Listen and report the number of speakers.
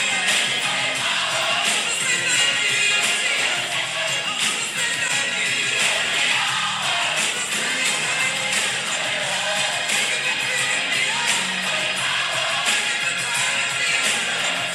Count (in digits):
0